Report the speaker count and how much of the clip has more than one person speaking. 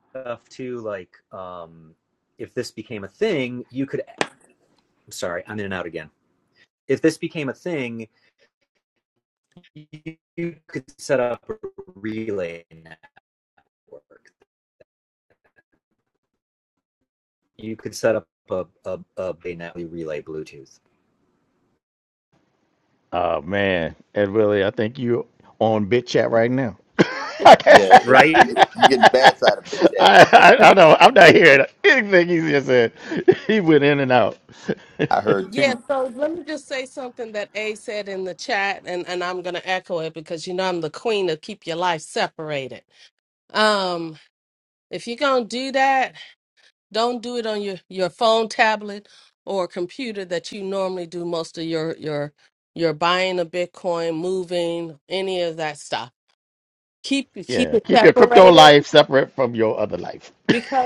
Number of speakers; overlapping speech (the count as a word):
four, about 3%